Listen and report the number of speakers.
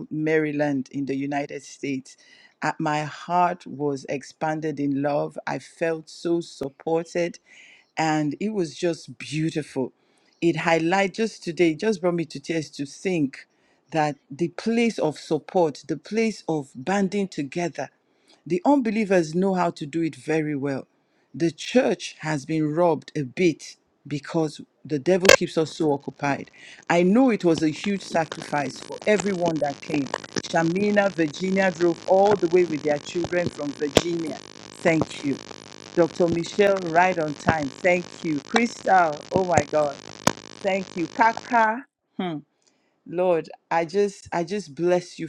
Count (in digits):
1